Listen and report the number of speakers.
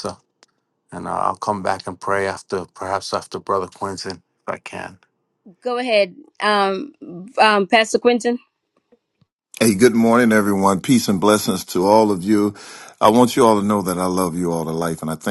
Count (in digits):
3